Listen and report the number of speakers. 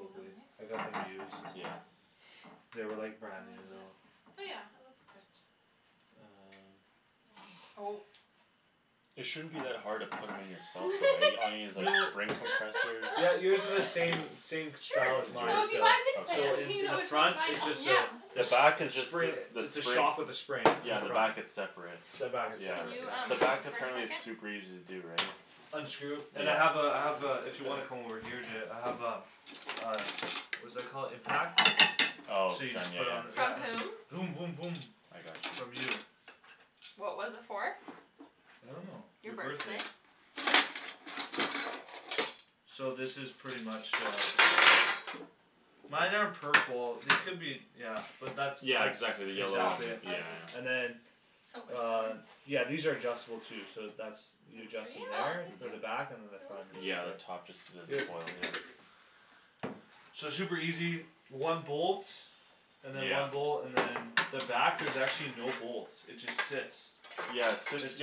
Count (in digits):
4